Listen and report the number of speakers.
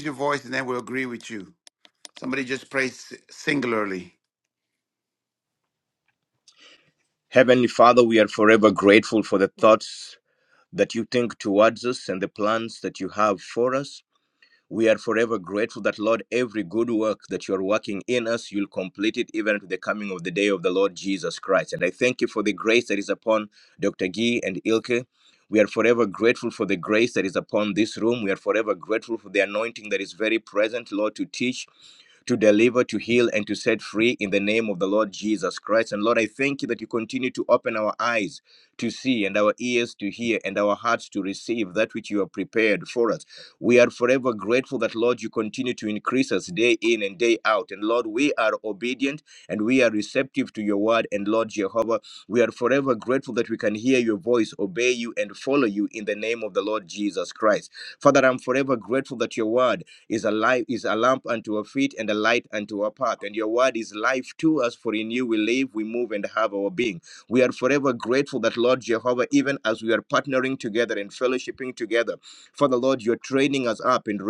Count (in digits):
2